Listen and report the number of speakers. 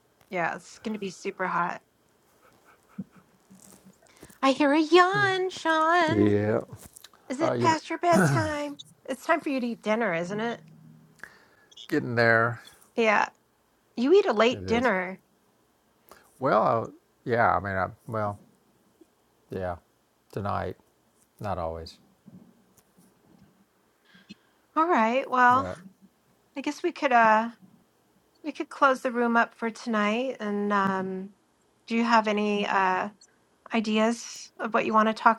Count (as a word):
two